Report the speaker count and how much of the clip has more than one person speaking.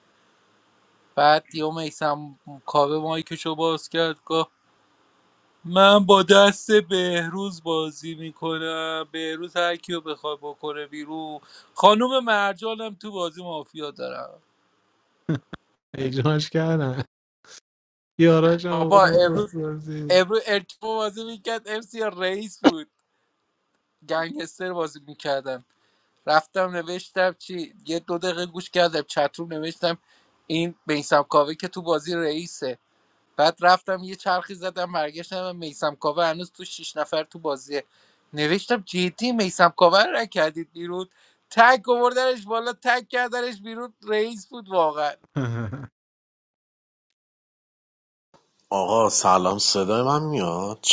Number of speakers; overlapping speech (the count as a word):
three, about 2%